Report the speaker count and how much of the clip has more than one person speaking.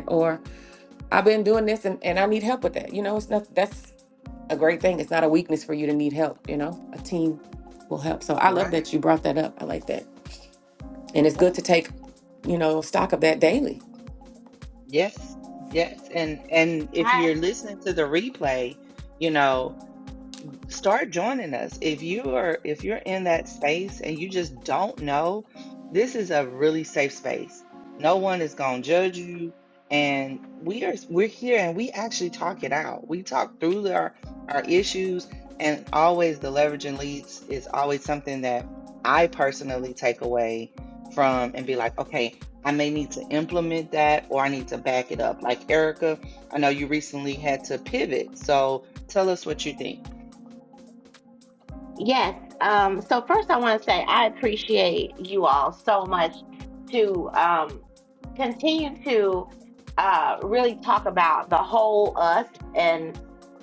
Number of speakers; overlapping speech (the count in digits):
3, about 1%